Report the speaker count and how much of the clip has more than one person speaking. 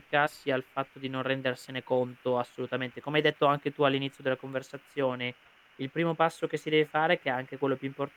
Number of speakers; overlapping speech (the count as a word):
one, no overlap